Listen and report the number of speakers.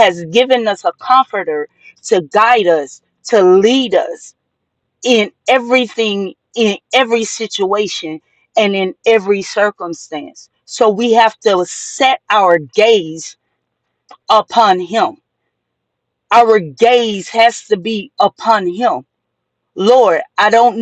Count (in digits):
1